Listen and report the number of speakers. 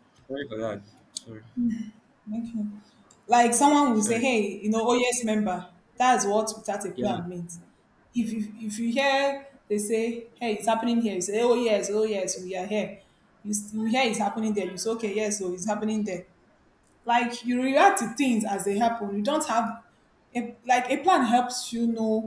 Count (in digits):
2